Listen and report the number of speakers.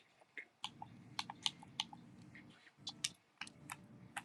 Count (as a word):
zero